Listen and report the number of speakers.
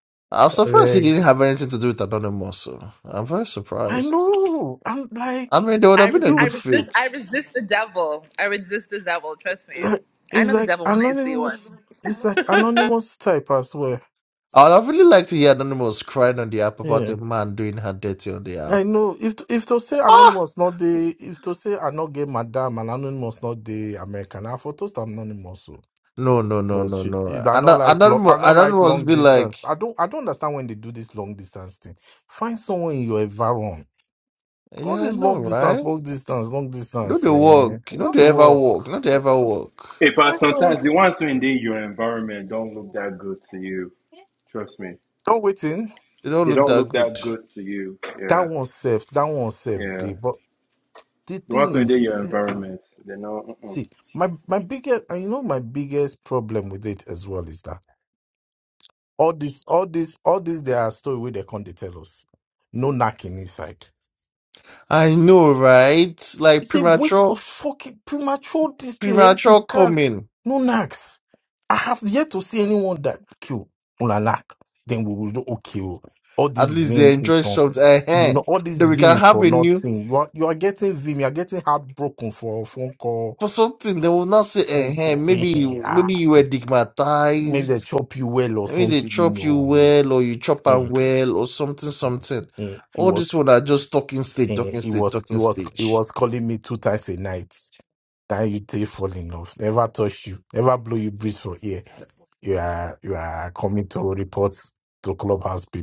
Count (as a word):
four